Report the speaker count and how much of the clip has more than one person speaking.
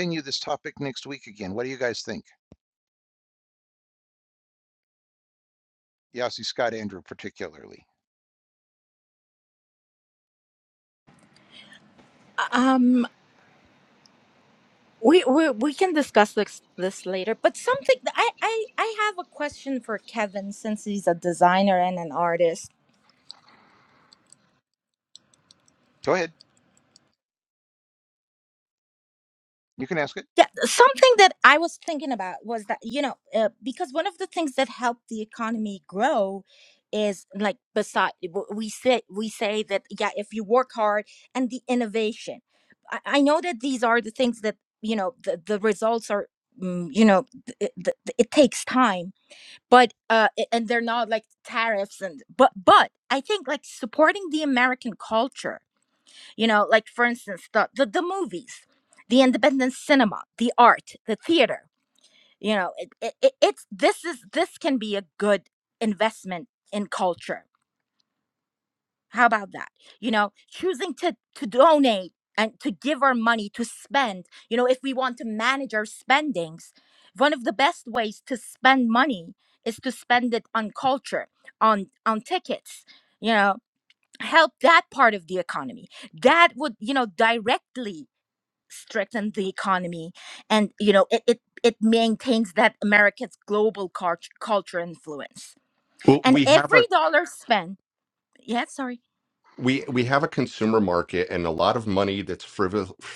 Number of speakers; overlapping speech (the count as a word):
three, about 1%